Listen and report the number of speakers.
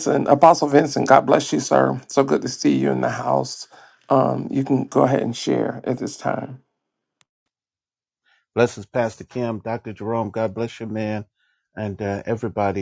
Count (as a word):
two